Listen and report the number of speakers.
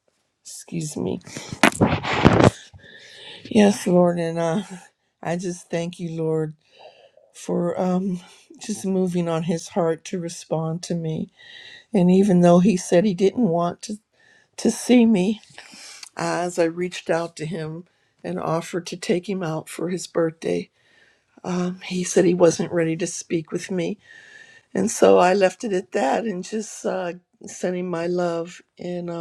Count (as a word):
one